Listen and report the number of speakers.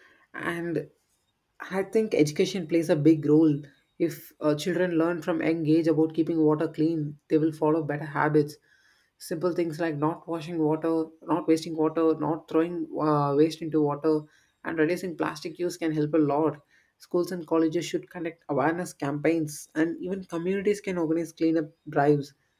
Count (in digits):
1